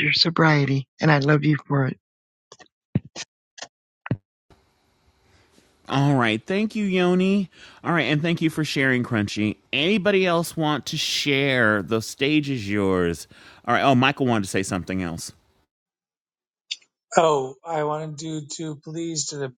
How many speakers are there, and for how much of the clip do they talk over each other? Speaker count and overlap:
3, no overlap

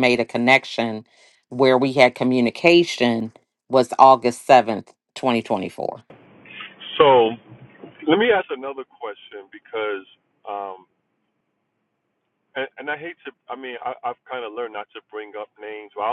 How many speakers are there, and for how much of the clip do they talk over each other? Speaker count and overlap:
2, no overlap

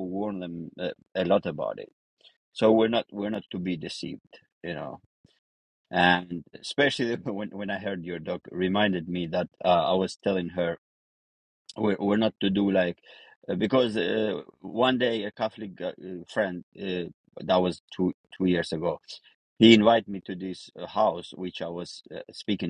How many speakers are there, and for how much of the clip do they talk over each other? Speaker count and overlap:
1, no overlap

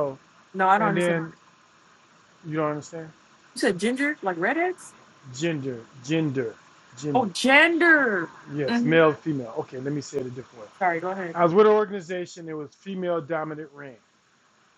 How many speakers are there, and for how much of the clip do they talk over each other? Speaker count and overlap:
2, about 7%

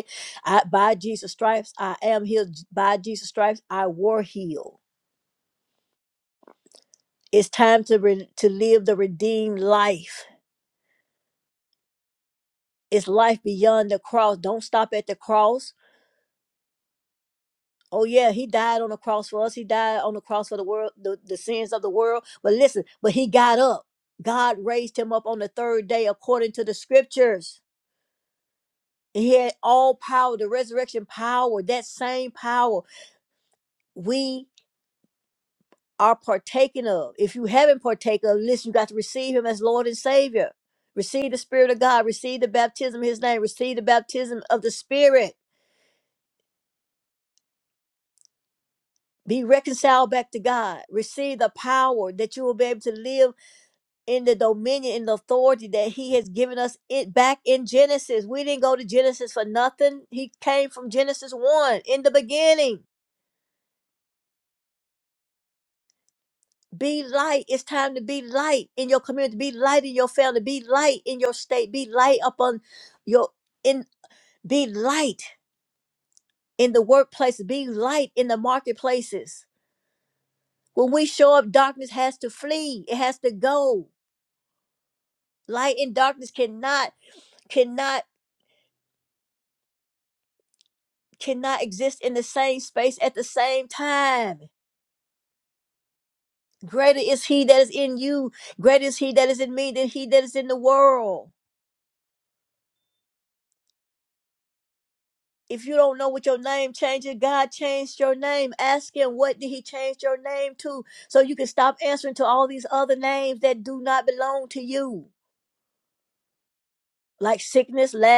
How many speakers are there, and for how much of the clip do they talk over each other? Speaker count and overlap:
1, no overlap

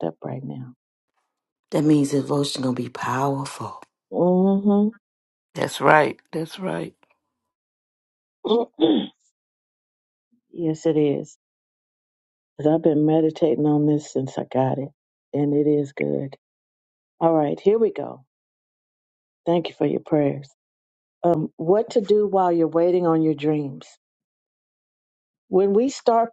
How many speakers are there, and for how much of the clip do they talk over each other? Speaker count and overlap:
3, no overlap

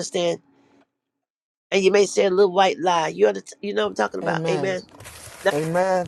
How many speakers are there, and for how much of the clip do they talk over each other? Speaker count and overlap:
2, about 9%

